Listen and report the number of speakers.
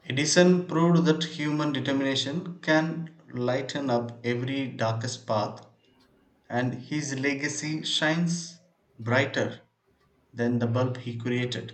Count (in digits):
1